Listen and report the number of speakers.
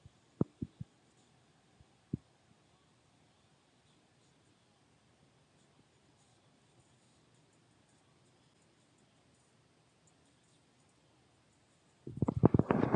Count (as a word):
zero